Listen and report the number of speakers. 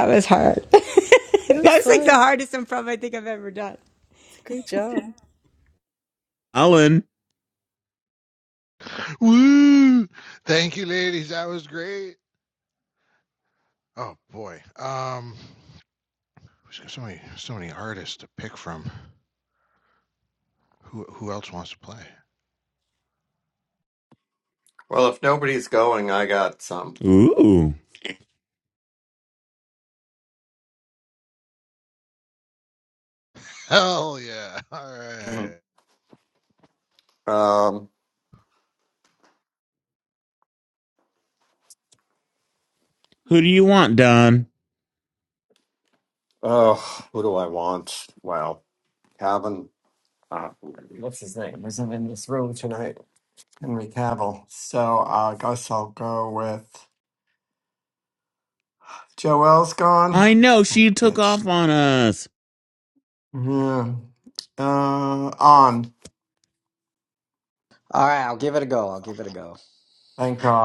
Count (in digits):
6